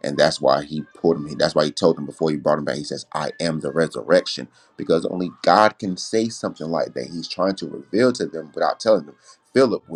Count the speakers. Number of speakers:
1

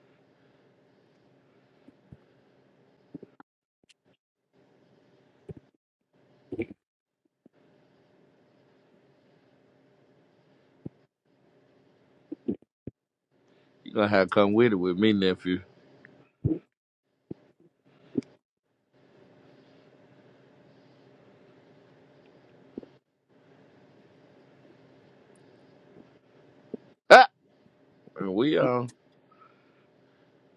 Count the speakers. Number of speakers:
1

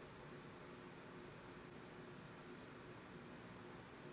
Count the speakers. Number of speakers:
0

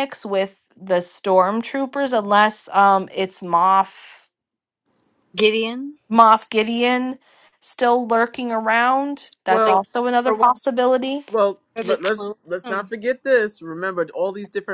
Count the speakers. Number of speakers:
3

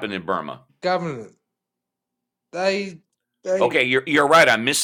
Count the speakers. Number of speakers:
2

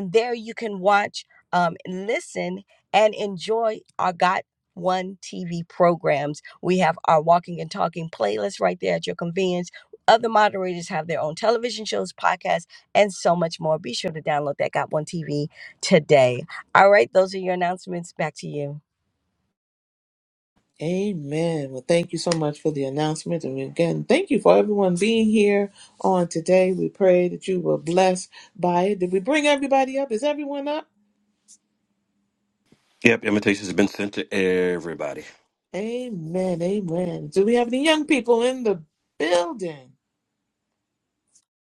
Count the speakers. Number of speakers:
3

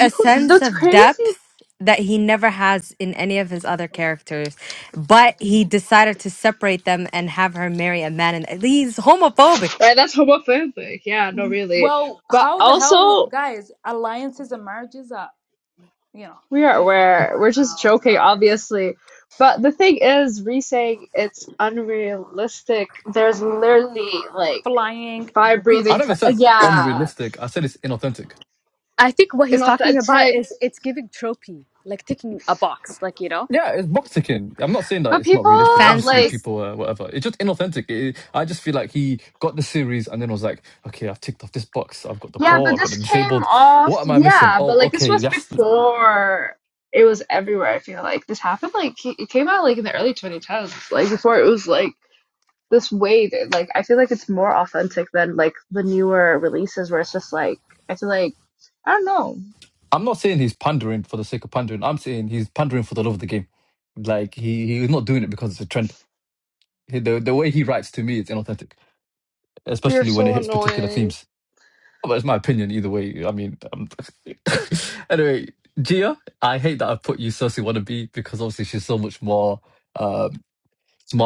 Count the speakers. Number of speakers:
5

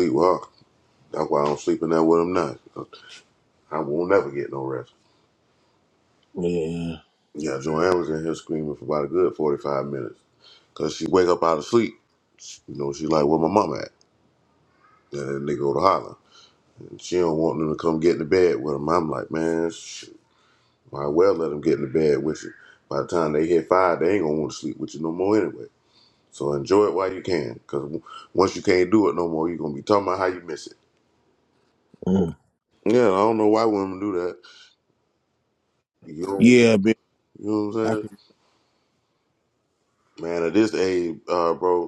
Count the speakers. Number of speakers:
2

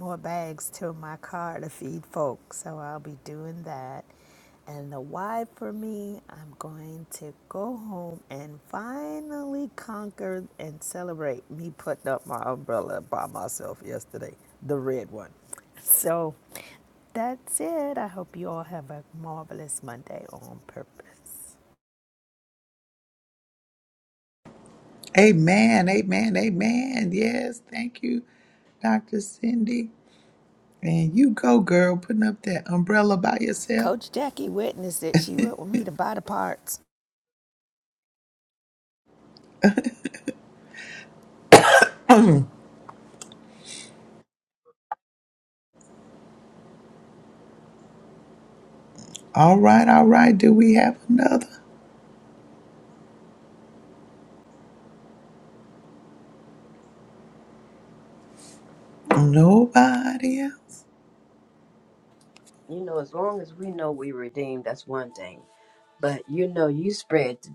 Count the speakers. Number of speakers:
3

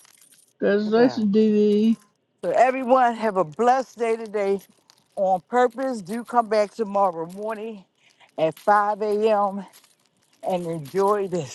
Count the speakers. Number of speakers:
2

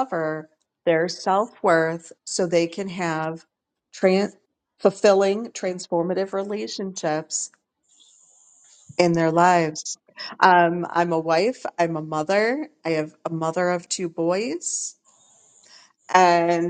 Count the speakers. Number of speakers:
1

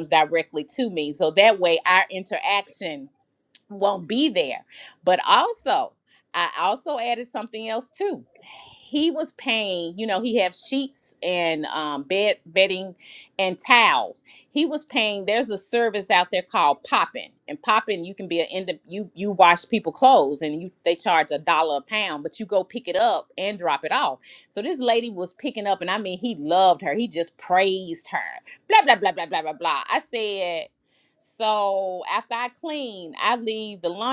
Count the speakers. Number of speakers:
1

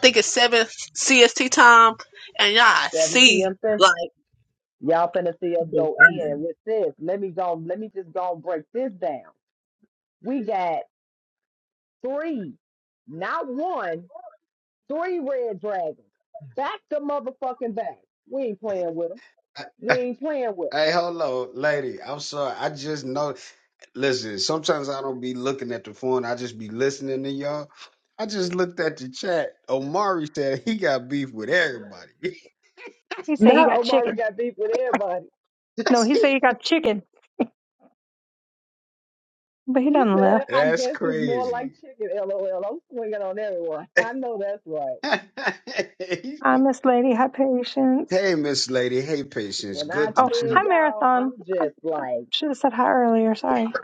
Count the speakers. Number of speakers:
4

